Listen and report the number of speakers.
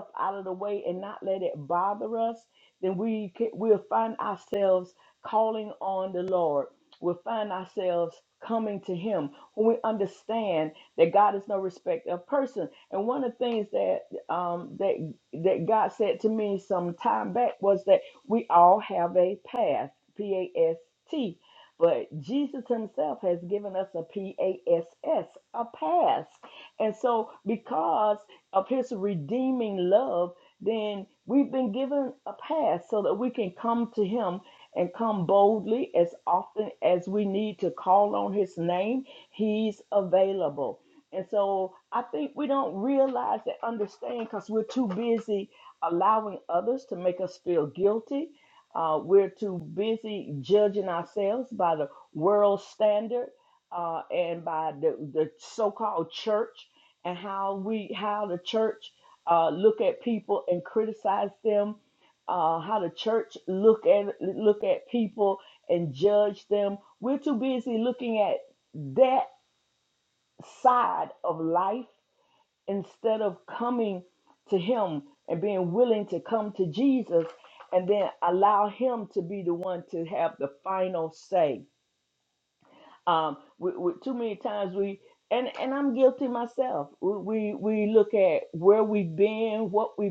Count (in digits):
1